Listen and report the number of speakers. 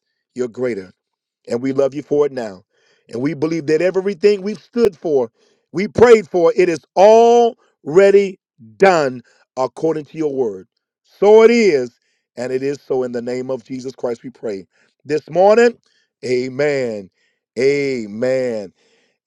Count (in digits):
1